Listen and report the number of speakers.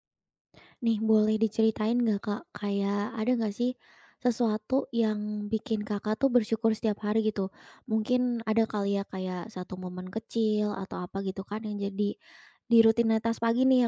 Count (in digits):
1